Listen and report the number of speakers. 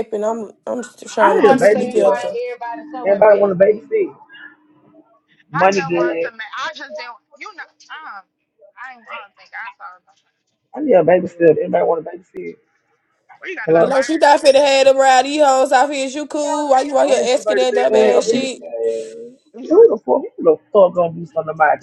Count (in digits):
4